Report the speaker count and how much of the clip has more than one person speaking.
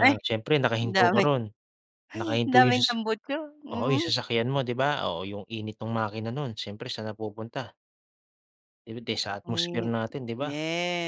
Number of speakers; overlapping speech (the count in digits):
2, about 22%